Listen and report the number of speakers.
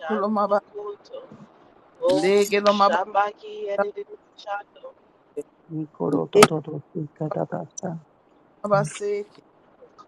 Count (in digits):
3